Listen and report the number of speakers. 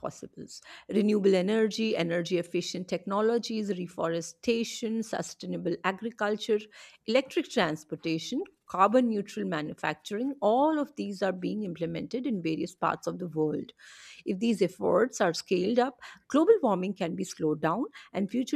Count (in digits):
1